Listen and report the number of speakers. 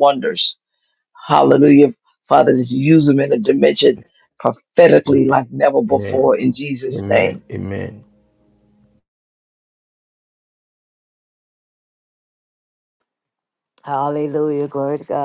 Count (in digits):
3